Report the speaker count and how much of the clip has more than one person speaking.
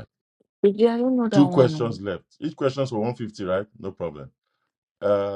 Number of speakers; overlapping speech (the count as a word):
two, about 12%